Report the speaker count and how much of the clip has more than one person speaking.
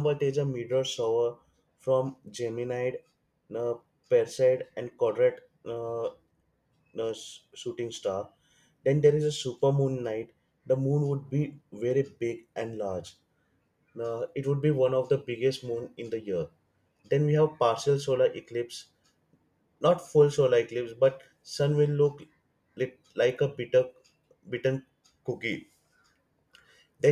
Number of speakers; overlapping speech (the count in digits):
1, no overlap